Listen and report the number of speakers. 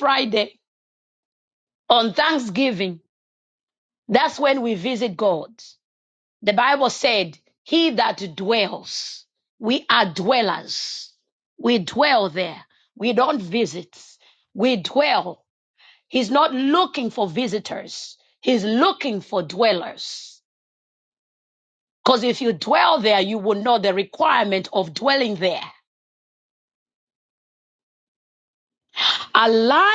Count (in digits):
1